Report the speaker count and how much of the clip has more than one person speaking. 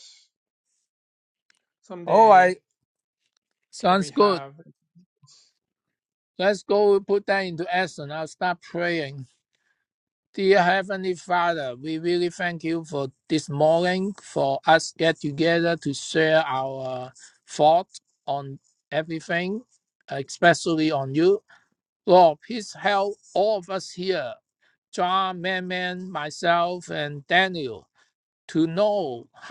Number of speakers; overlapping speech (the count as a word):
two, about 3%